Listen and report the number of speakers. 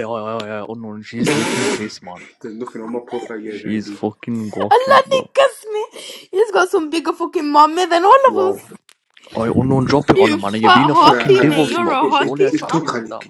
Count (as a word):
three